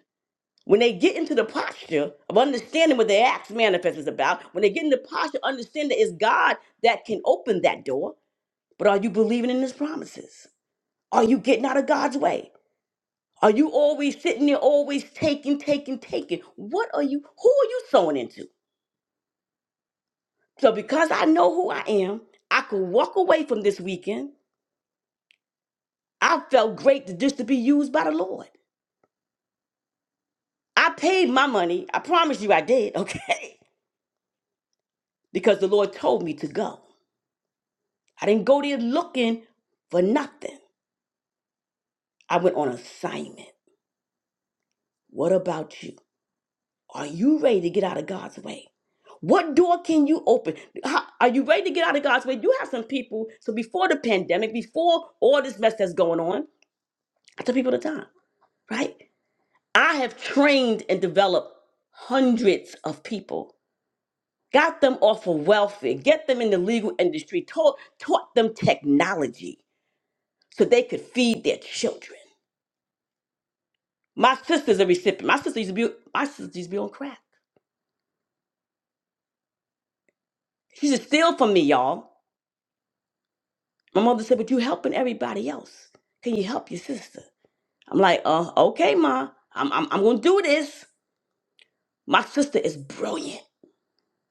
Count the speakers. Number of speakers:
one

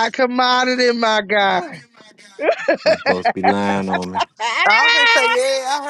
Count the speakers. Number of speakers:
three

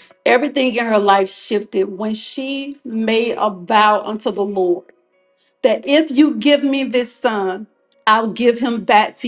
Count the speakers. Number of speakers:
one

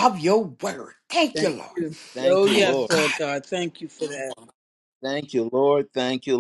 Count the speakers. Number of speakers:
three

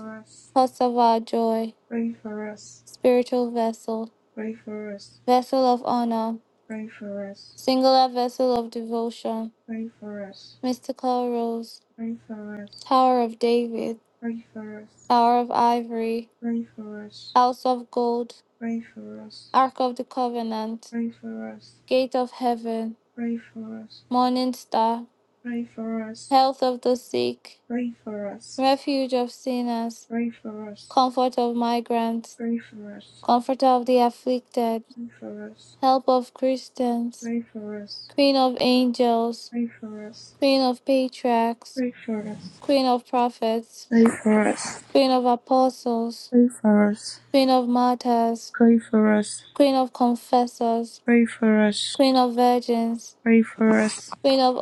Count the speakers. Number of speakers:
two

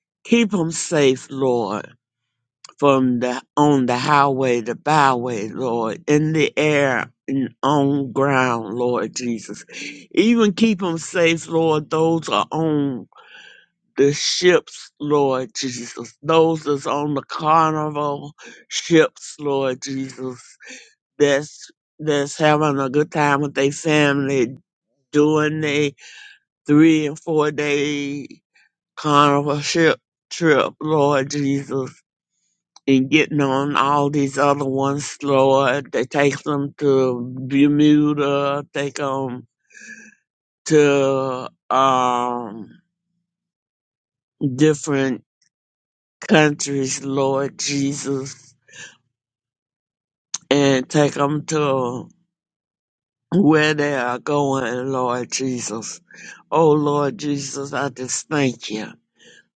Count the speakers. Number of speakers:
one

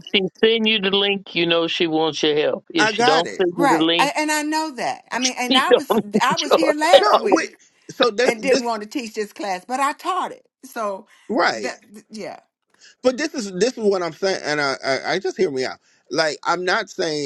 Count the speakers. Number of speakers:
three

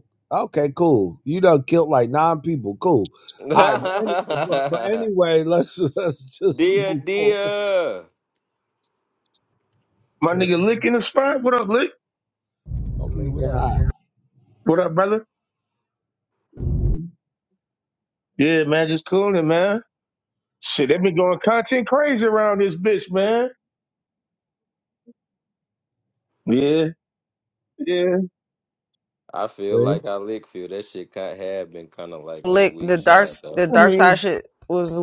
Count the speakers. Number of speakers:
four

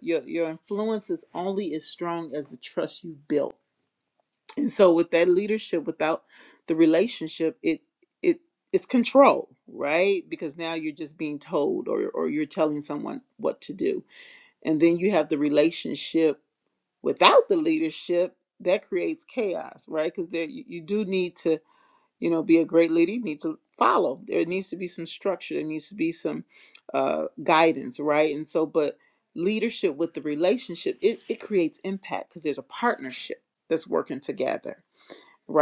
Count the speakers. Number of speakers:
one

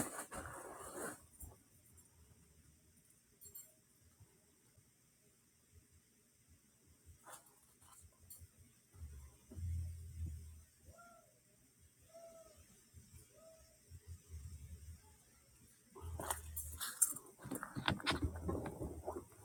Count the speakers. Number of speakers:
zero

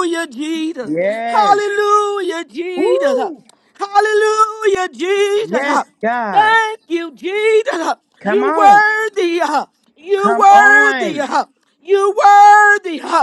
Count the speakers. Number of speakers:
two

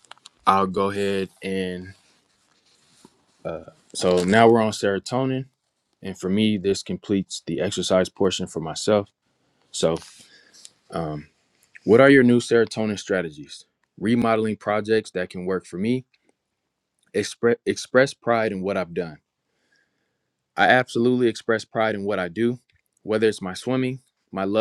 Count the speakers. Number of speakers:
one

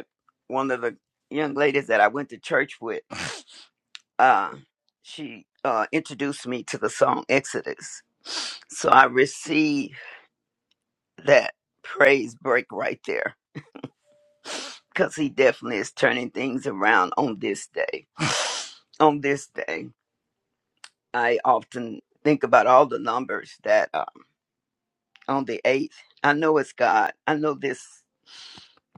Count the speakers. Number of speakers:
one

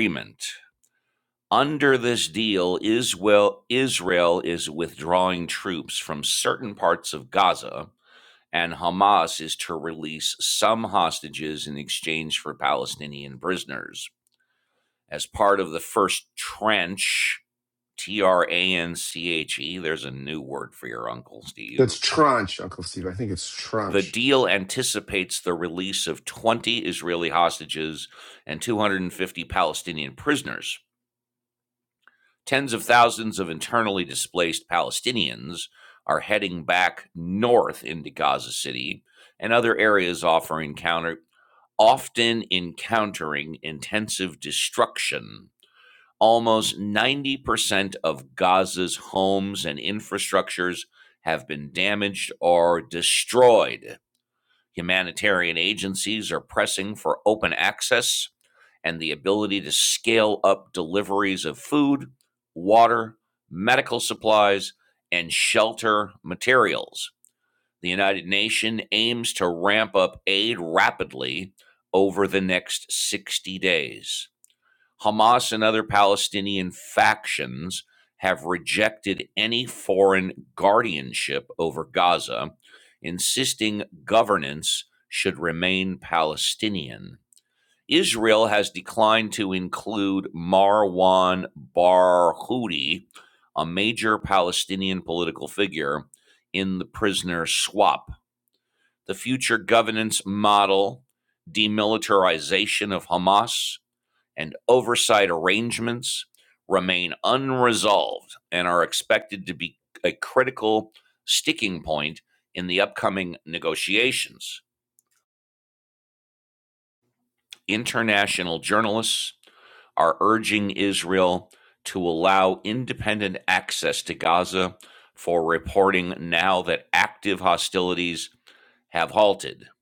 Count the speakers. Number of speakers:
two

